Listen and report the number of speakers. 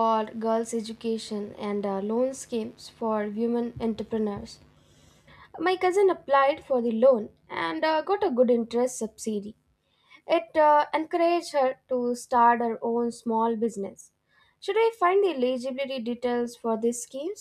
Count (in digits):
1